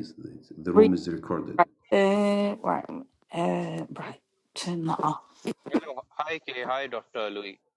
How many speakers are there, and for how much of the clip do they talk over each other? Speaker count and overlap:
three, about 3%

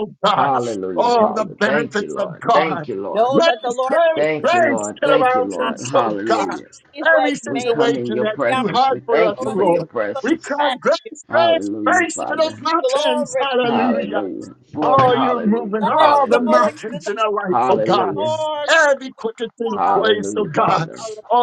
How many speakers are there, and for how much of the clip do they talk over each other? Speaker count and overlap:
three, about 73%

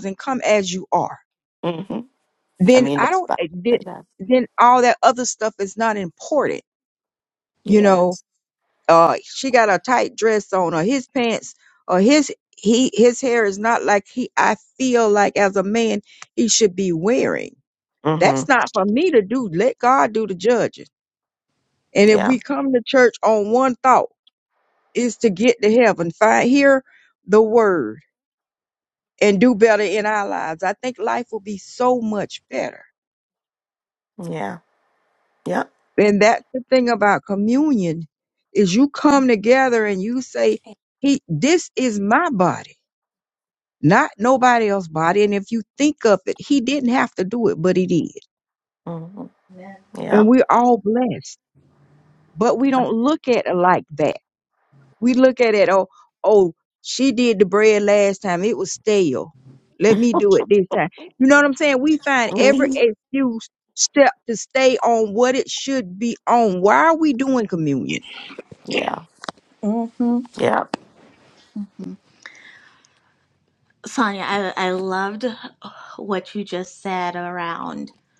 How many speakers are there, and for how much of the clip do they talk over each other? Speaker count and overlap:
three, about 3%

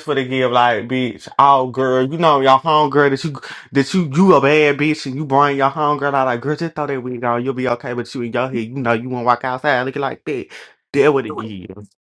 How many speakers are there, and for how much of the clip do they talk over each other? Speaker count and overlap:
one, no overlap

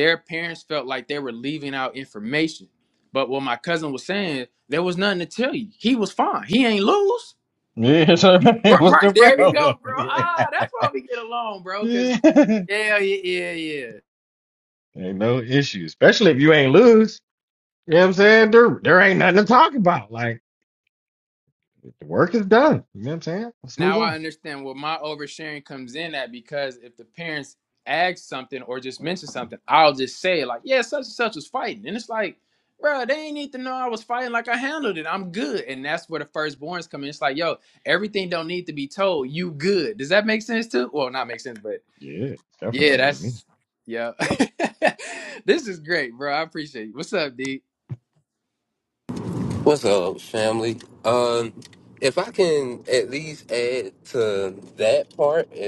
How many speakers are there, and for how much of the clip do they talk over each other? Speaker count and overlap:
three, about 4%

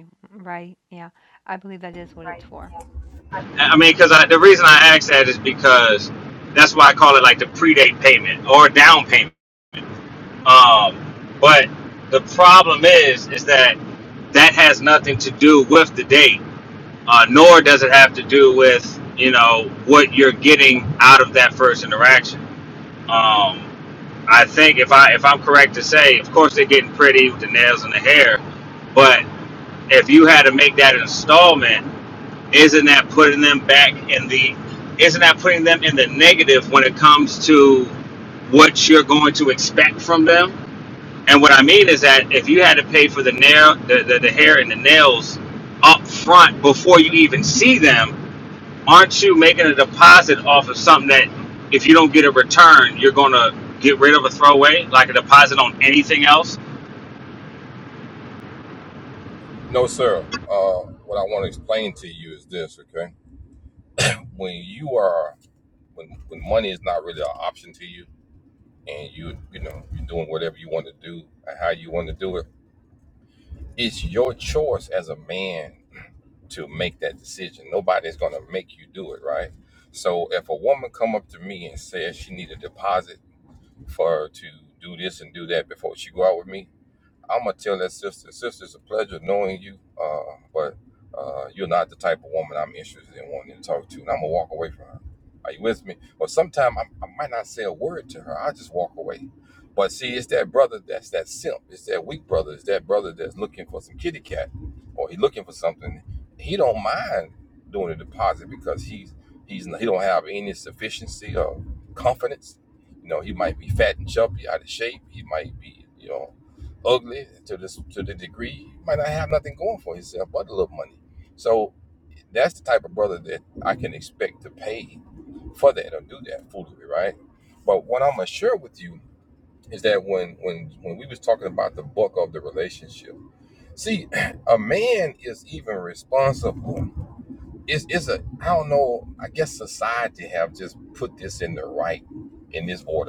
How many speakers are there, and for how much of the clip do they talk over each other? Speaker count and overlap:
three, no overlap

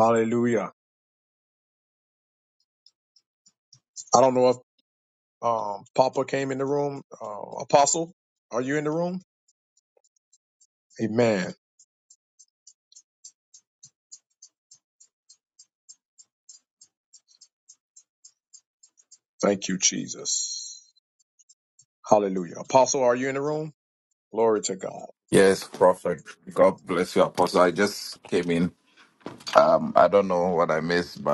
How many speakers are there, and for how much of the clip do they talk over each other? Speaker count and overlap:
two, no overlap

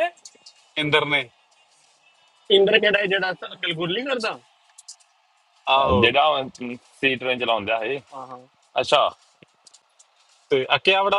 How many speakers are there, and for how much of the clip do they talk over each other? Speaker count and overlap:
three, about 1%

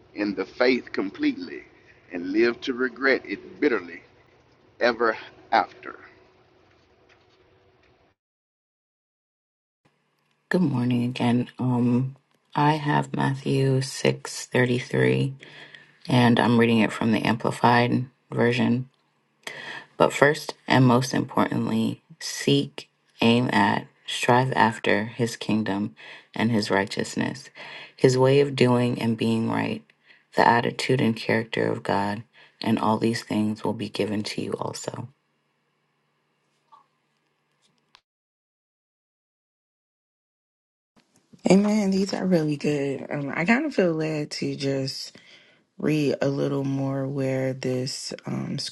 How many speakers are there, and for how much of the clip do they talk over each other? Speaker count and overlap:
three, no overlap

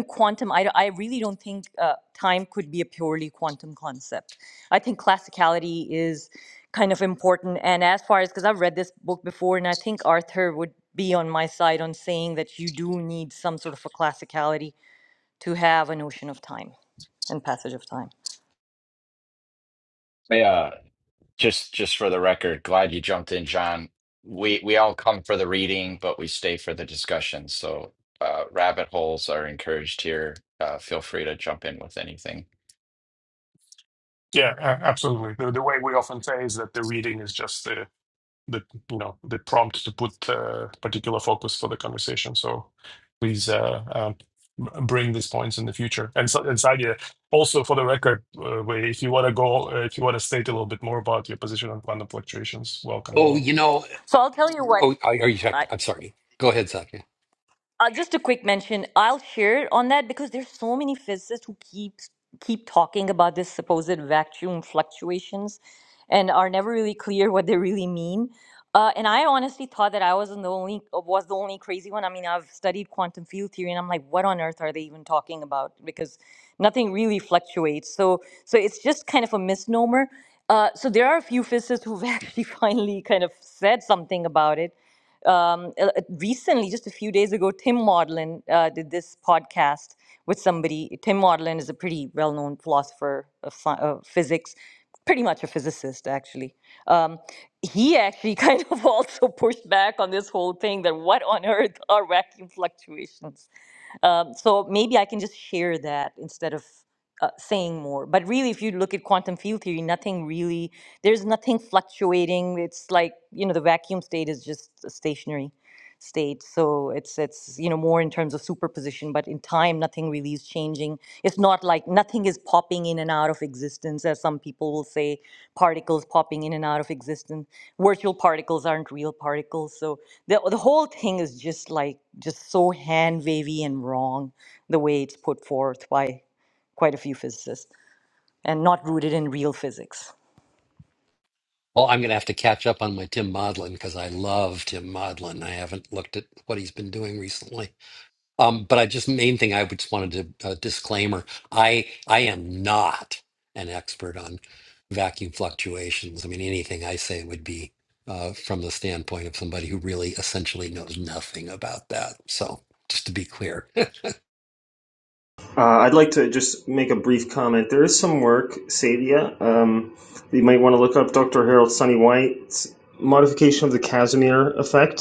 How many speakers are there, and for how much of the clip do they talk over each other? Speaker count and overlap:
five, under 1%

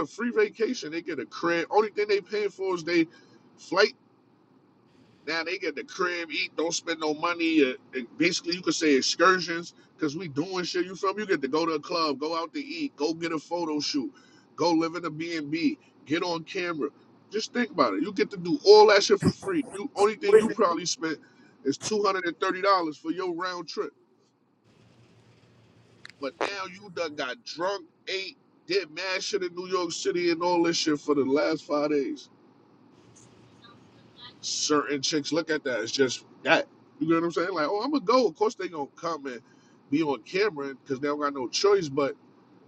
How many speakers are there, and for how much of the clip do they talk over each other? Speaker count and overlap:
one, no overlap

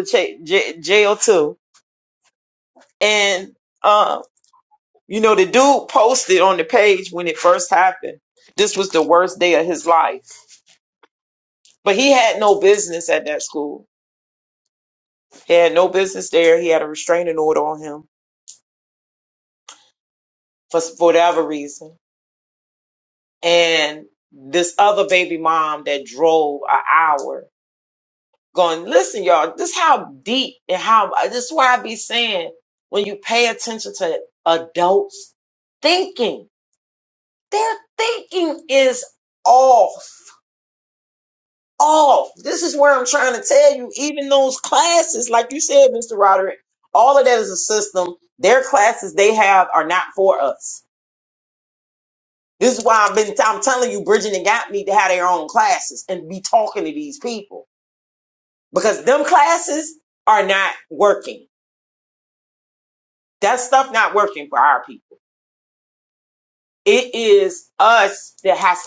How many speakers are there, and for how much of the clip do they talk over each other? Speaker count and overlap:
one, no overlap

